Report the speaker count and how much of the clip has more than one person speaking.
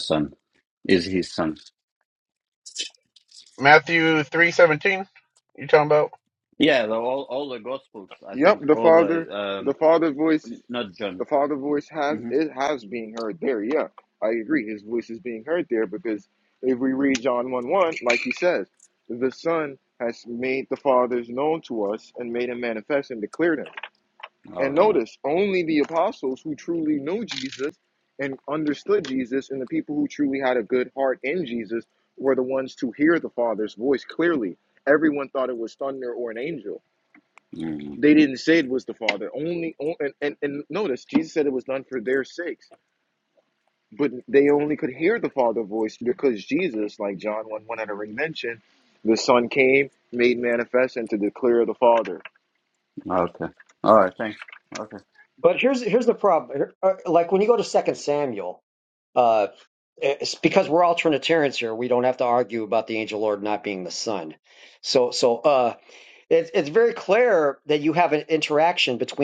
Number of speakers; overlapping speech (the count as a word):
four, about 2%